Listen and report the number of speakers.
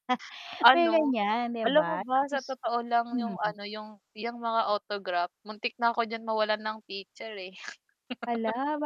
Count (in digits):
2